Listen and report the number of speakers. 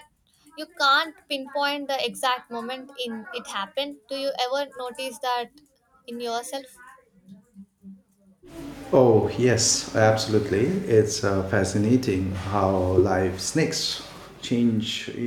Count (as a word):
two